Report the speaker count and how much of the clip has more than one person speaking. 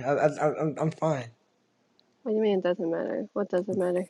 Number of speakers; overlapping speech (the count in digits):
2, no overlap